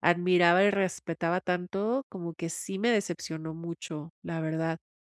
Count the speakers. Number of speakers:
1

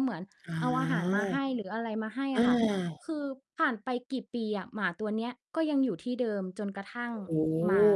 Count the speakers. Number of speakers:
2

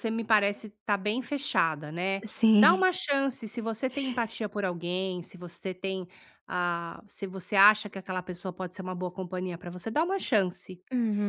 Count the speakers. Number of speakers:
2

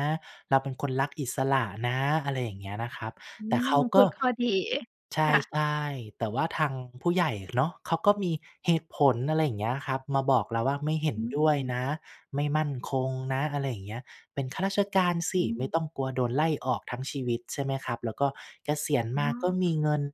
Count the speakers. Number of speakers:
2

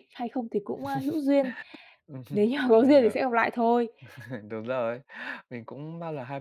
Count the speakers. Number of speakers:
2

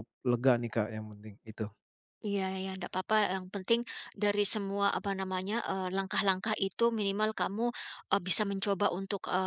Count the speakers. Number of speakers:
2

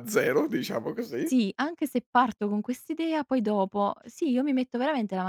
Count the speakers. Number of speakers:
2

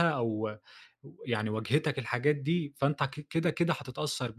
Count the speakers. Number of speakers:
1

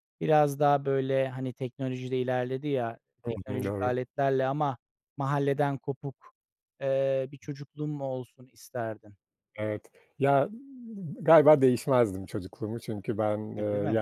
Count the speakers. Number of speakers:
2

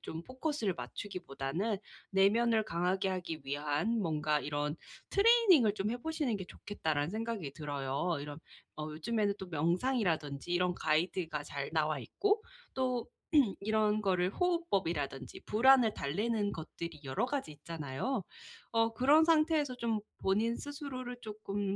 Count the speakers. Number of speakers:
1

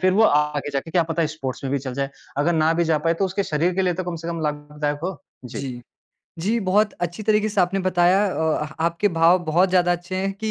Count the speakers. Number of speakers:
2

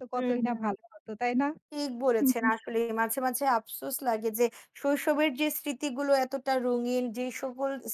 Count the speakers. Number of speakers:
2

